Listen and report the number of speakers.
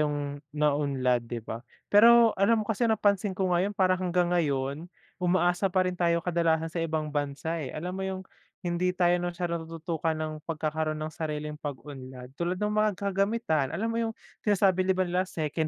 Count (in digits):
1